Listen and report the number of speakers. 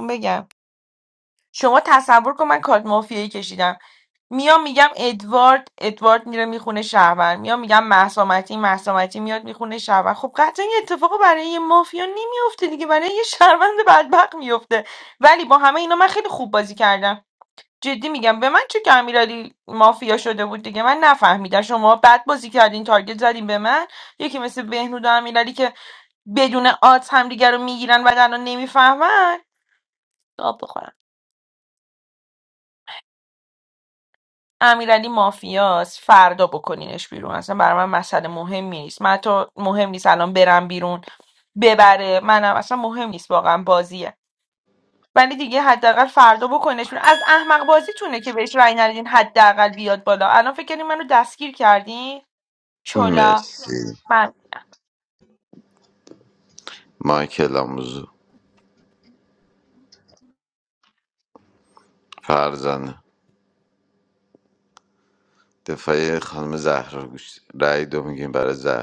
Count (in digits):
2